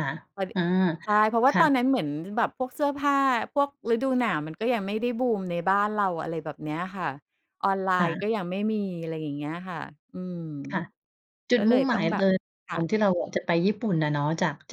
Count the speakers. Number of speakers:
two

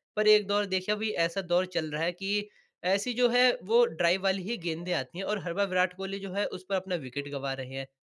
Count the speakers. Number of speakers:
one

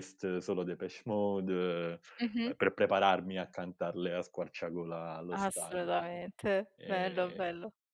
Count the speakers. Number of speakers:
two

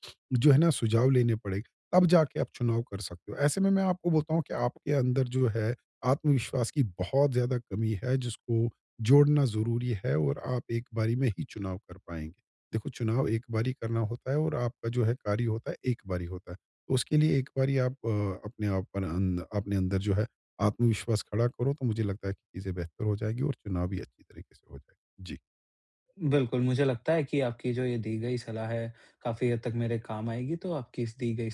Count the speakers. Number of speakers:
two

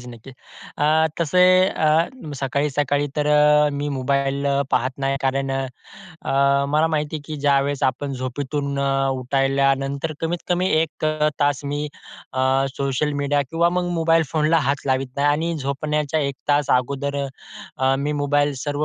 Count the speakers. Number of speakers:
one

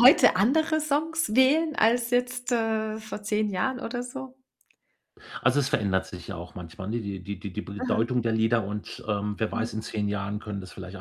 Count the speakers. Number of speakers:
two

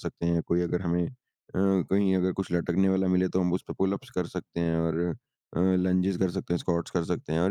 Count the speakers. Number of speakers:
one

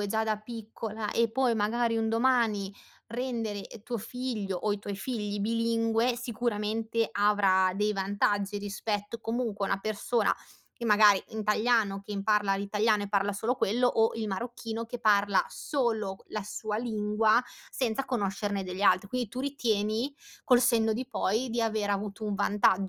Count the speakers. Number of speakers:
one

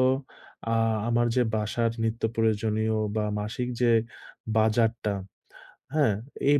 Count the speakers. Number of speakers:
one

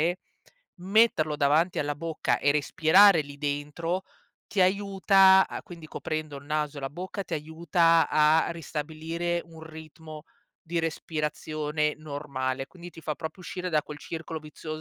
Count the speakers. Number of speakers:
one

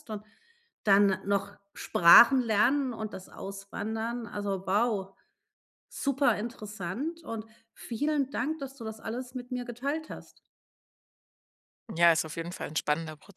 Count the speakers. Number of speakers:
two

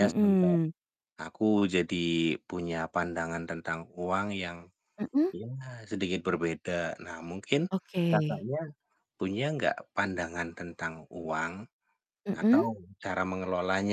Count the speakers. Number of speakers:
two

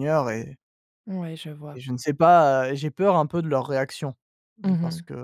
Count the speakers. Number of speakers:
two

